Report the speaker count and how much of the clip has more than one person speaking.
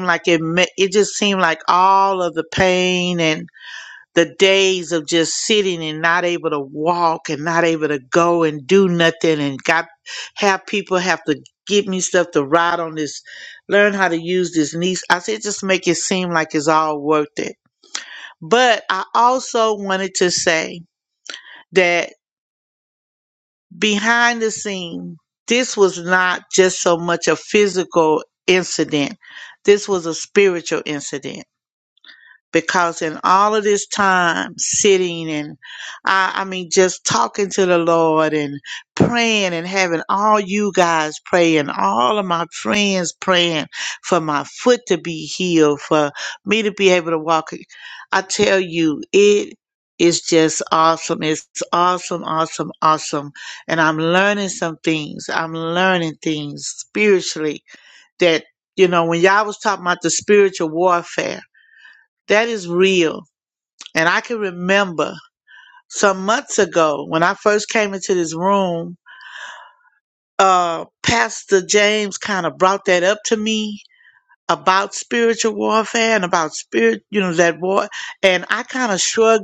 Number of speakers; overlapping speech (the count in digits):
1, no overlap